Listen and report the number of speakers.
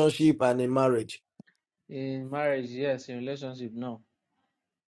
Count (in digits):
2